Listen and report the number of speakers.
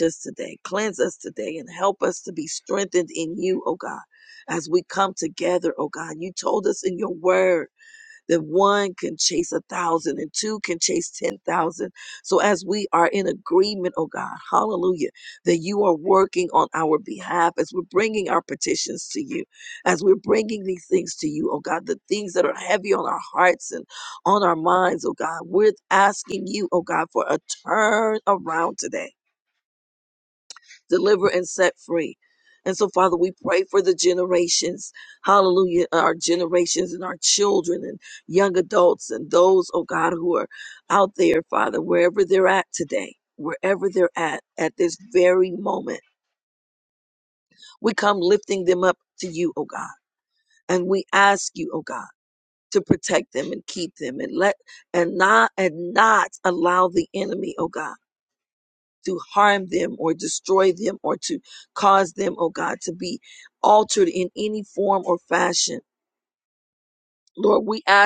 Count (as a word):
one